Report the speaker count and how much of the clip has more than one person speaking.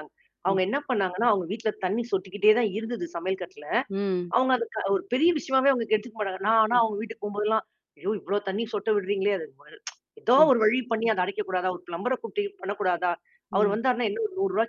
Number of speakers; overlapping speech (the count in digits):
2, about 4%